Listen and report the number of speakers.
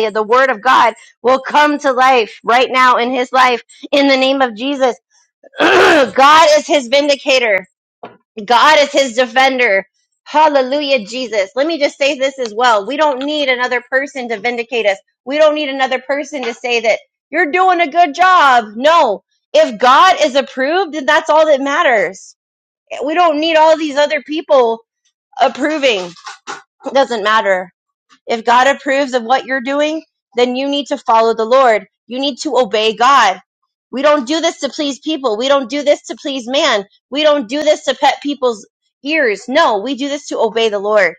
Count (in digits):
1